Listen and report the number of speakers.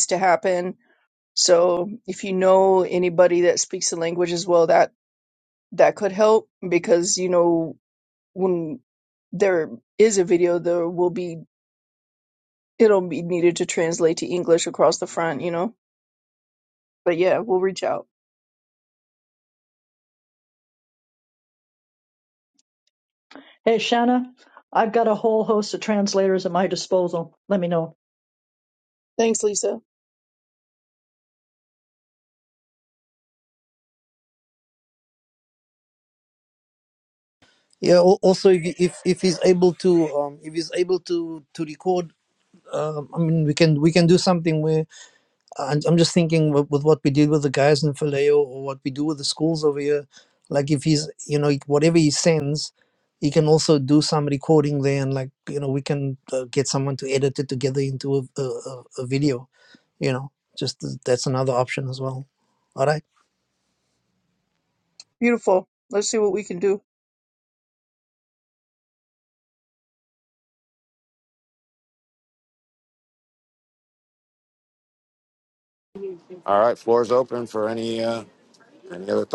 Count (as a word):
four